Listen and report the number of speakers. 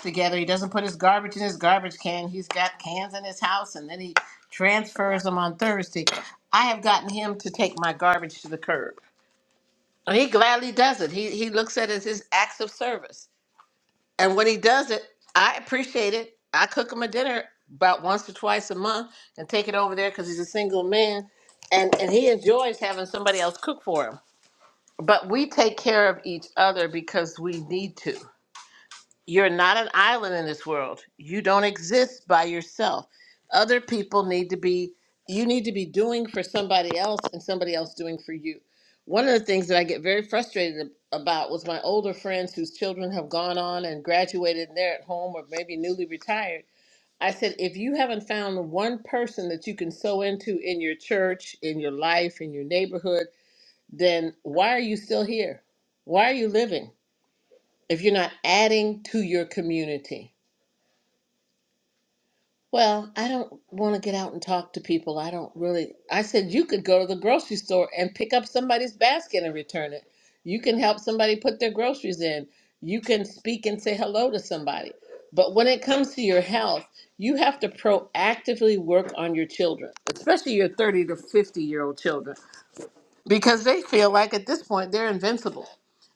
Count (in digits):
1